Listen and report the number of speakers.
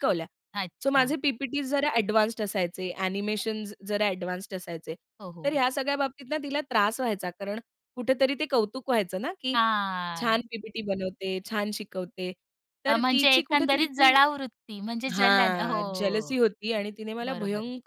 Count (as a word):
two